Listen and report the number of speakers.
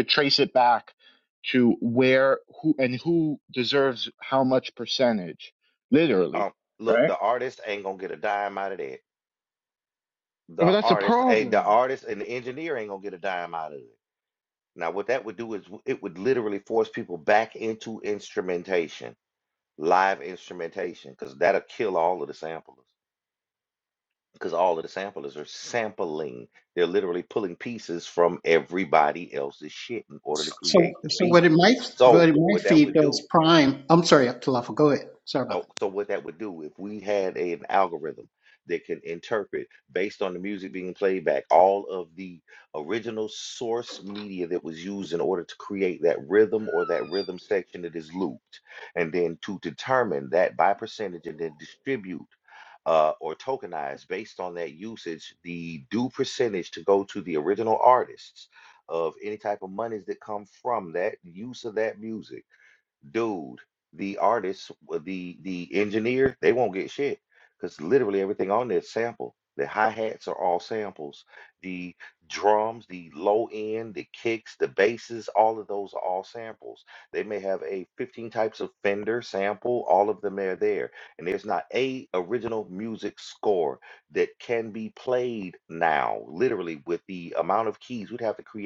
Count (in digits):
3